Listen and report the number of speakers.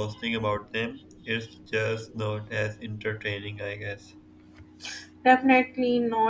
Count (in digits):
2